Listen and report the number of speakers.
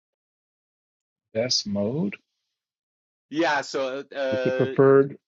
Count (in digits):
2